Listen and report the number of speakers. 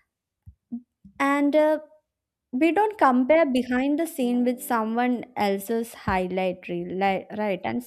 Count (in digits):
1